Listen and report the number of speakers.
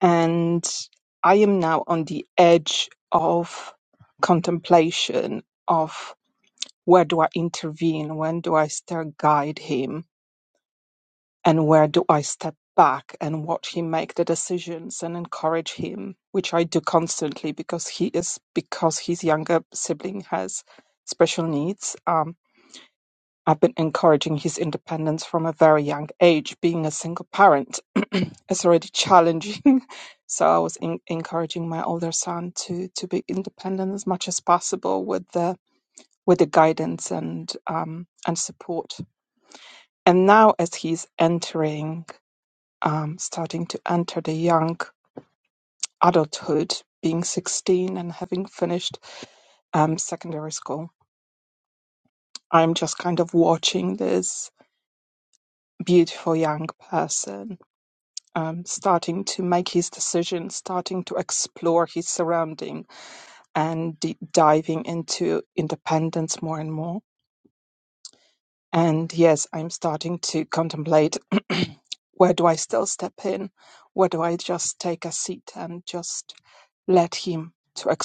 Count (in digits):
1